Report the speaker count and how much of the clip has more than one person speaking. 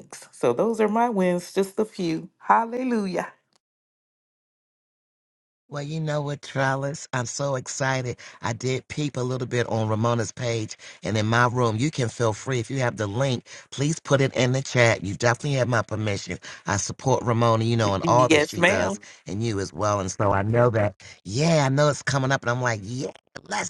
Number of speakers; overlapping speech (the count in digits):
2, about 4%